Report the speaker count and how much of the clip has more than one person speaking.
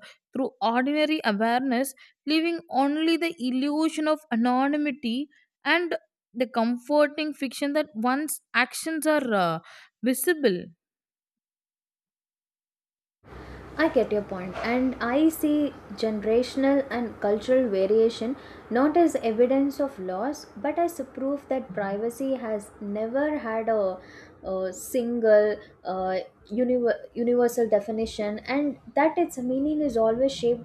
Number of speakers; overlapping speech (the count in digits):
2, no overlap